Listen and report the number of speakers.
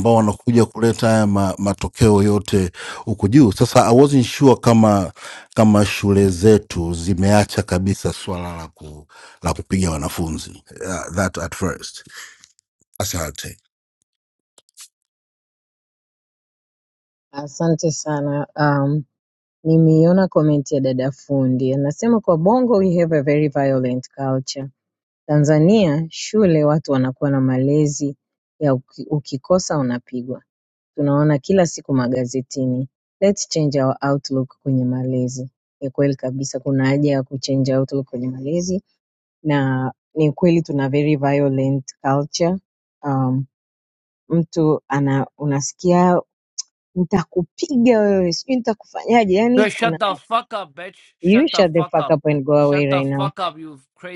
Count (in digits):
3